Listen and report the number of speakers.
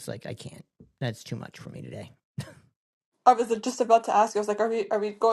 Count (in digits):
2